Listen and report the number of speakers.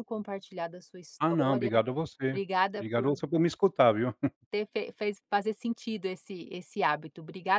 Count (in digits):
2